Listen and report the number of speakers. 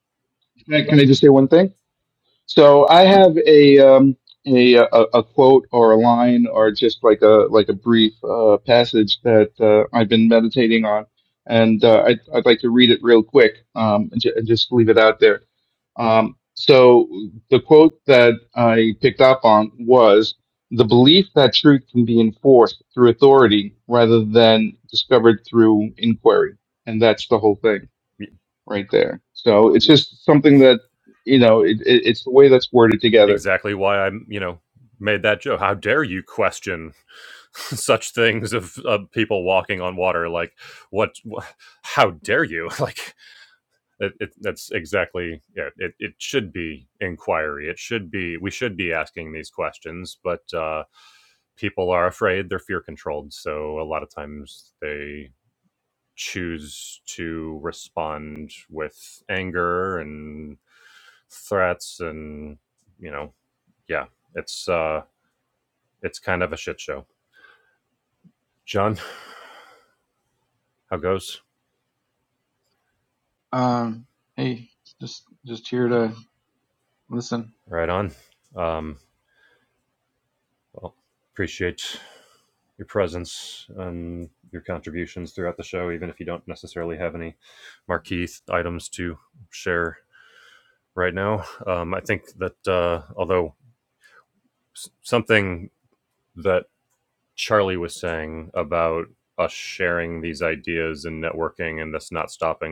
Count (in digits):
3